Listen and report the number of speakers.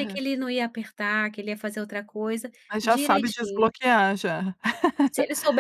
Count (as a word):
two